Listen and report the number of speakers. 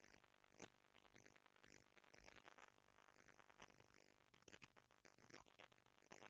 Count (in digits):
0